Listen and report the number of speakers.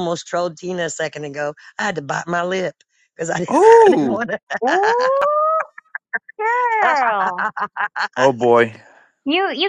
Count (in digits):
3